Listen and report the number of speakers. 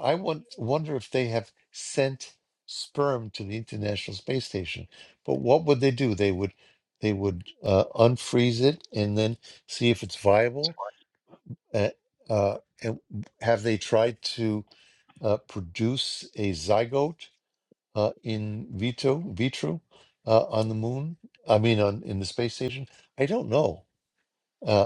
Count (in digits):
1